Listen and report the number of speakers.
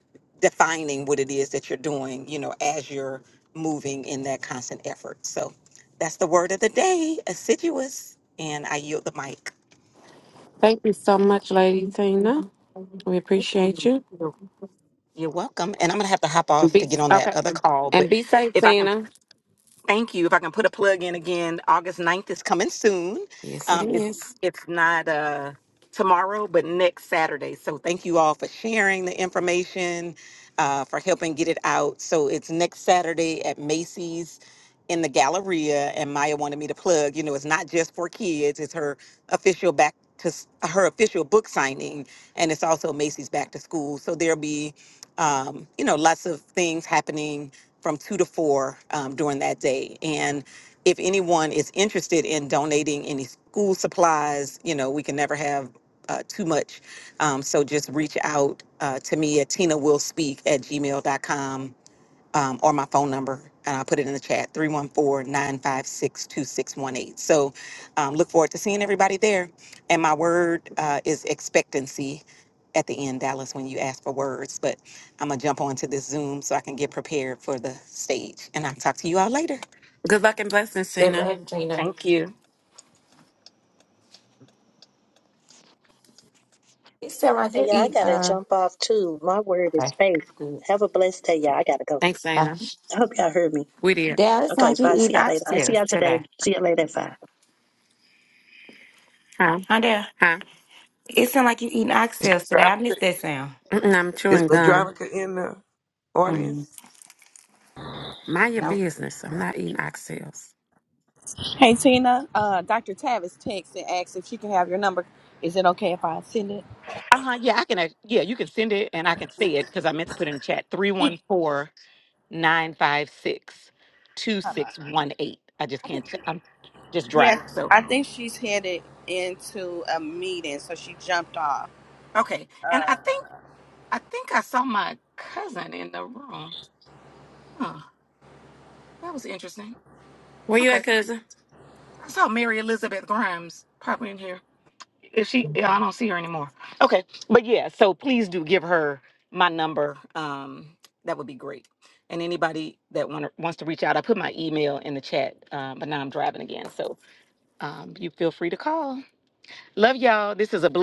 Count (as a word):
six